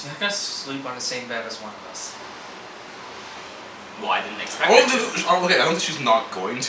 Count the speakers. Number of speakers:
three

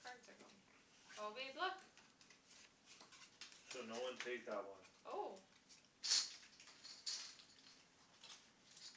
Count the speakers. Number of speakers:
two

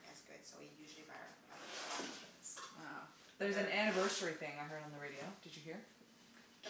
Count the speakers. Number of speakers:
two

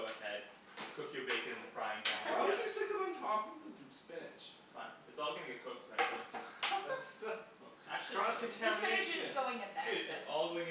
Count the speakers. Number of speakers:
three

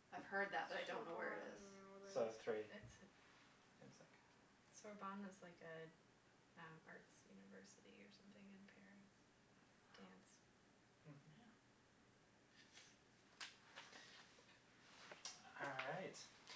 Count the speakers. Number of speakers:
four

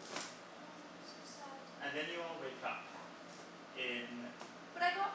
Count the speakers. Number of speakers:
two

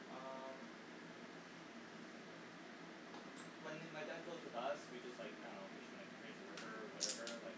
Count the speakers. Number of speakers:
one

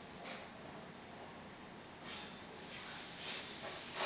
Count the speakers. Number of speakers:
zero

